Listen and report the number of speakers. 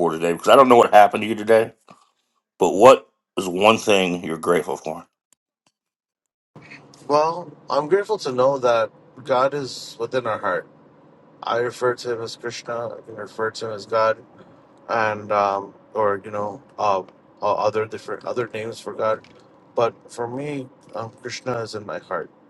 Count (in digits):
2